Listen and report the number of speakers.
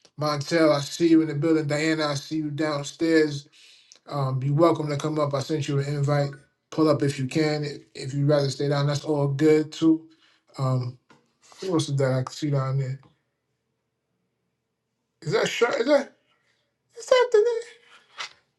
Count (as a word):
one